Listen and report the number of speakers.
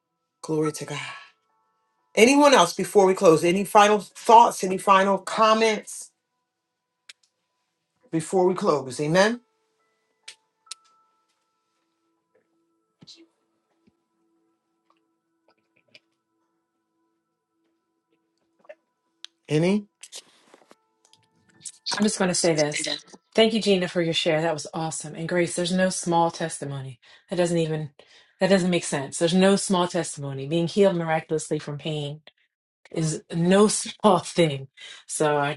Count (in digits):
2